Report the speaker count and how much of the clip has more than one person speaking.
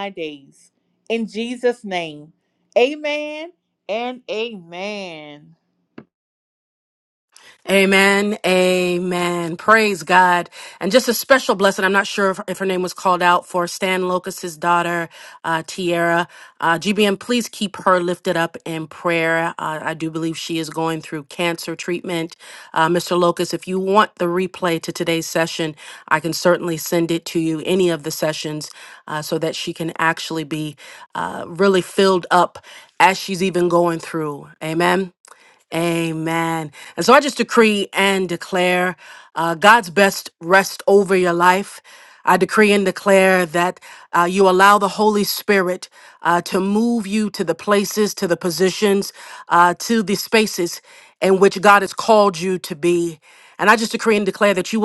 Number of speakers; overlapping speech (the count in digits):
2, no overlap